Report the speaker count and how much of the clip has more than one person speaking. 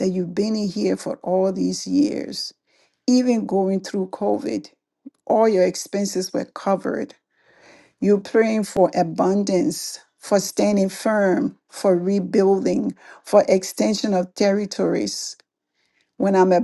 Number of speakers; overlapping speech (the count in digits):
1, no overlap